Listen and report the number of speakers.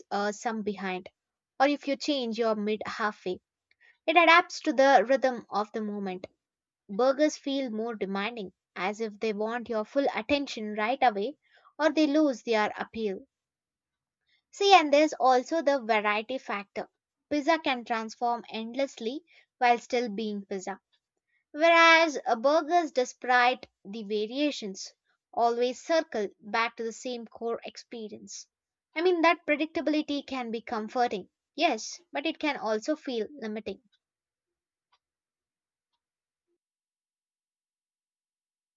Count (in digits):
1